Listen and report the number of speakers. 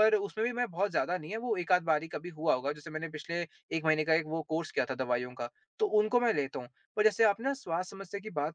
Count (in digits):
1